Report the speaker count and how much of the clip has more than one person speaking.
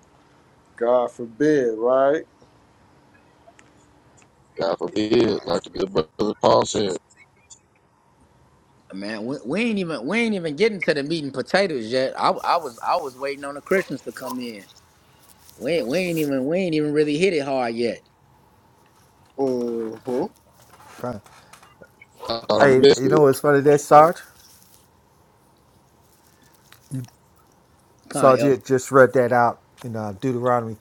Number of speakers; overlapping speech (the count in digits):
4, about 4%